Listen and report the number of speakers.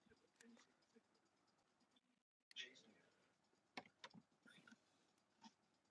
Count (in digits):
0